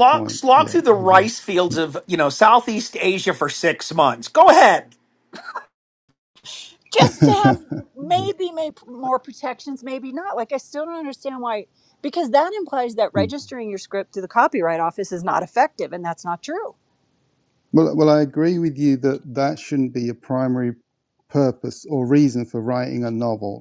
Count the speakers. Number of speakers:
3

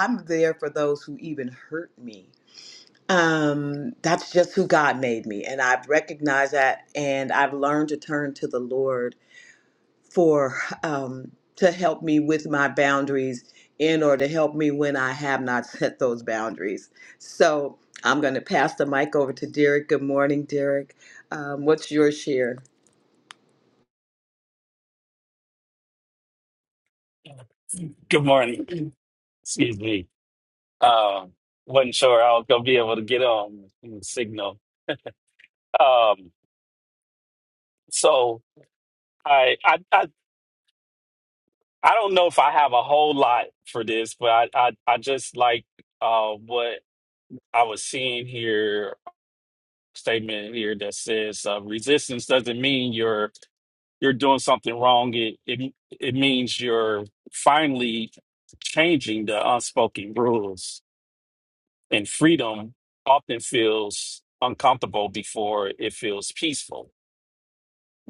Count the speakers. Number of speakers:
2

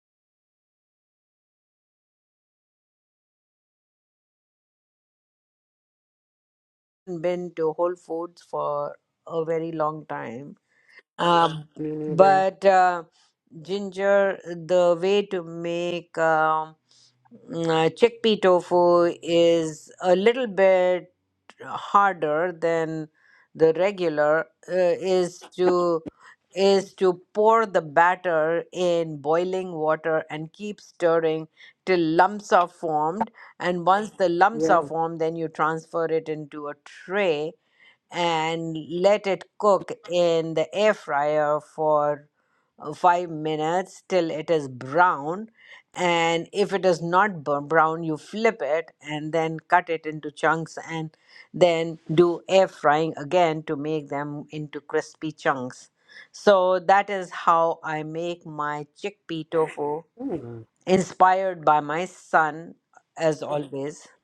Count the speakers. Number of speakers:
2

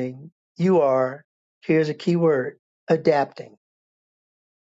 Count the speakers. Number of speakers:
1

